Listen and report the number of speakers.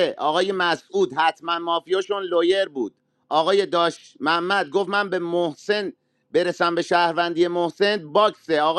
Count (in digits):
1